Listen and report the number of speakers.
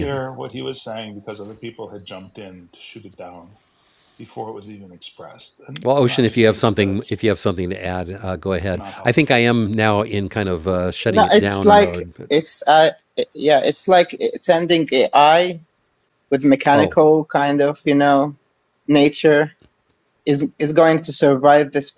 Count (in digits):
3